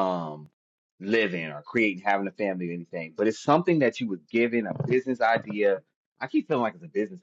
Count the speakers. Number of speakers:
1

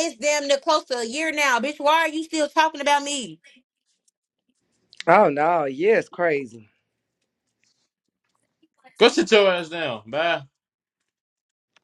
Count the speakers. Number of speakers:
3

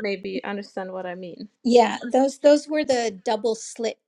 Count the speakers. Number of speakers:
2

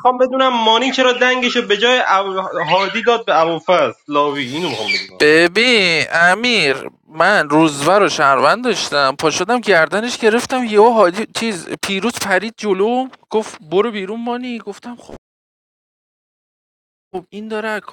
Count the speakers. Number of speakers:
2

